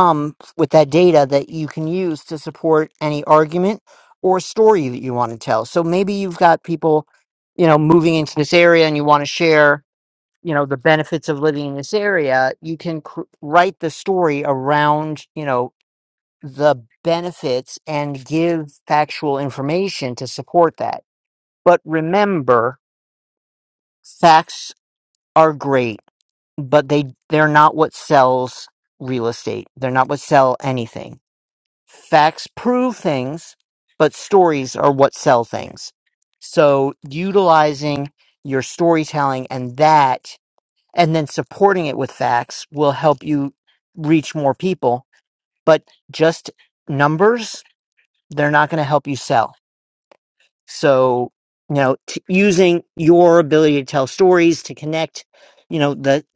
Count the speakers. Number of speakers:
1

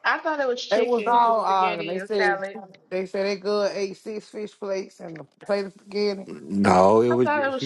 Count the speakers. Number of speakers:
3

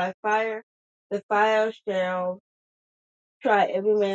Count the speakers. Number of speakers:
1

